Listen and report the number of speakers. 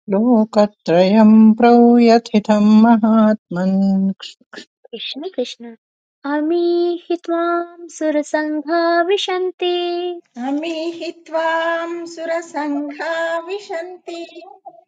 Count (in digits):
3